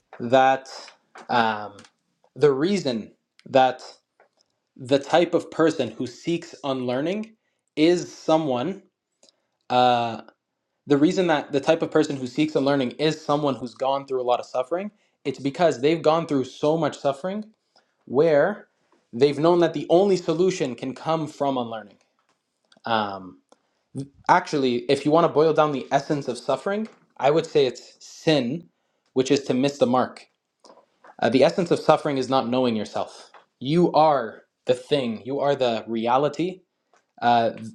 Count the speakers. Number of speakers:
1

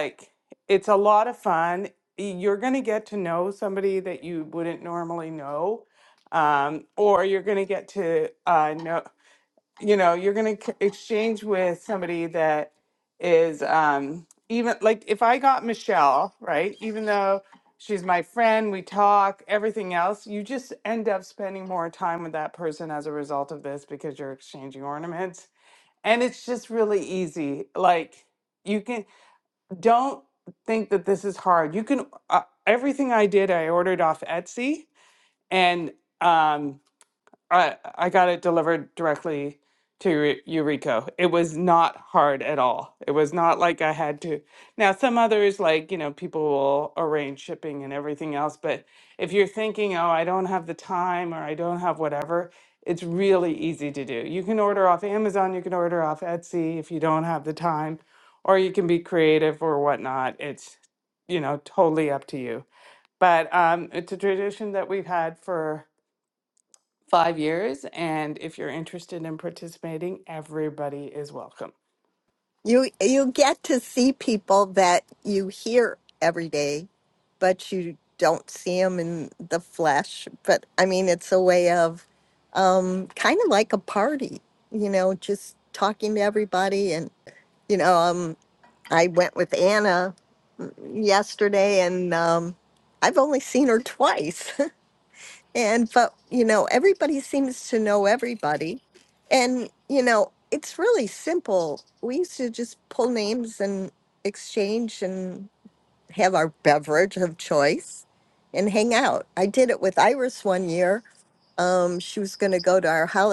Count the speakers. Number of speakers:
2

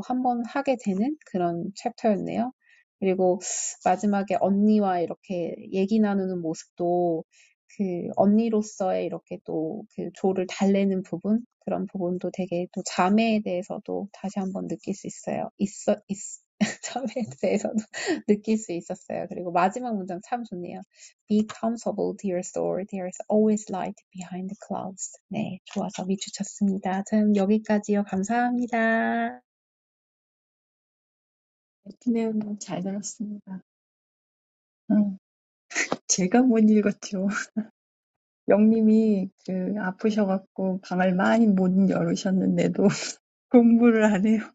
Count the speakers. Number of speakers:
2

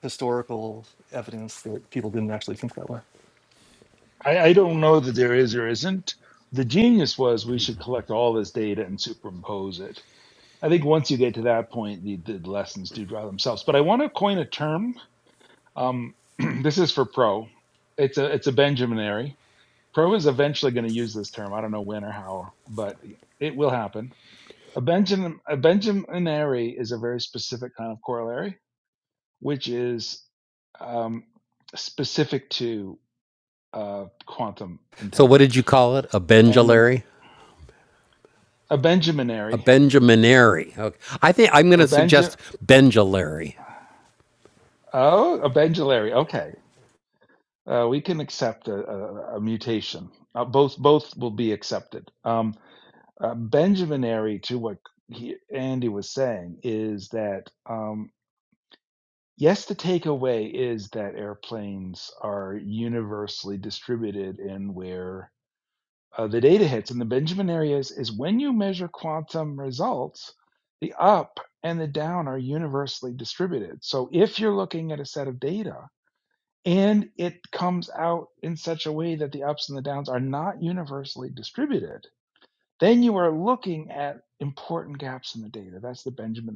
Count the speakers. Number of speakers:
3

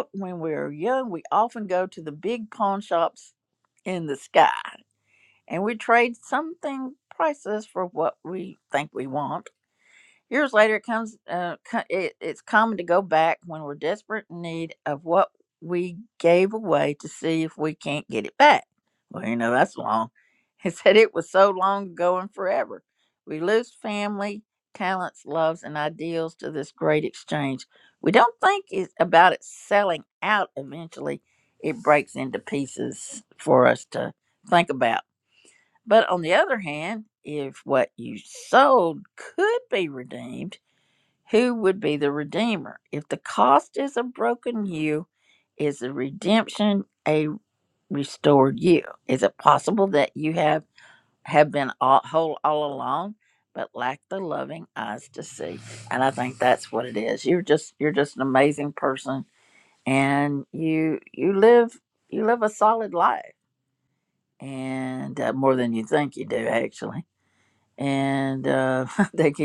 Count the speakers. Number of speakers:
1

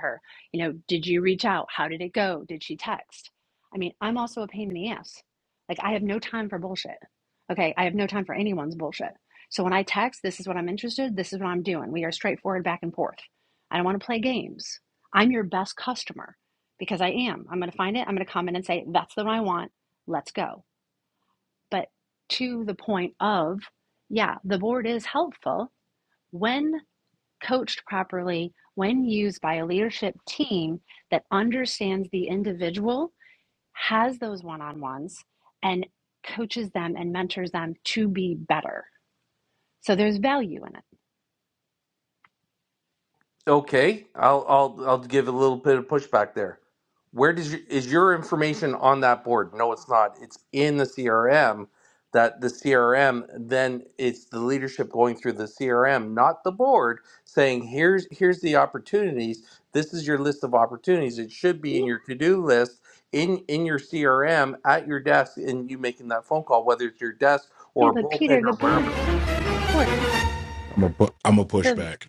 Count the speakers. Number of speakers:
3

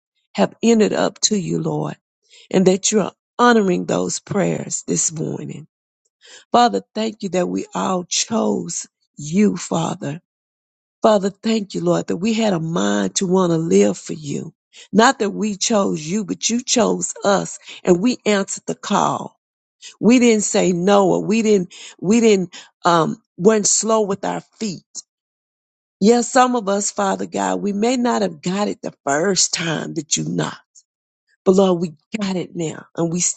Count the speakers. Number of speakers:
1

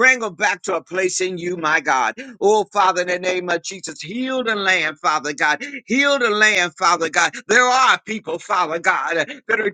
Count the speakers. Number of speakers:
1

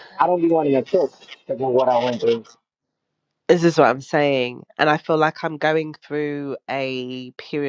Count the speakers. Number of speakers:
2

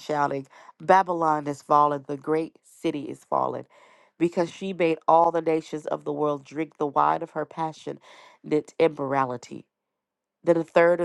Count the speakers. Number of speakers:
1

